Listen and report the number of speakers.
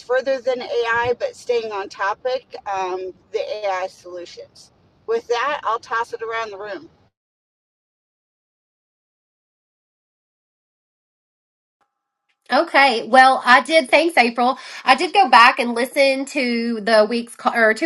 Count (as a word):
two